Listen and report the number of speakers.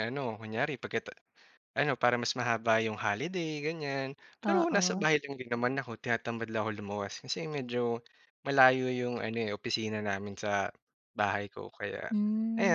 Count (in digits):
2